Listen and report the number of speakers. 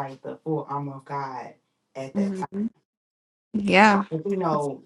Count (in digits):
2